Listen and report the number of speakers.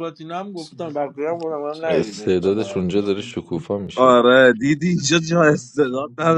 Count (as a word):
three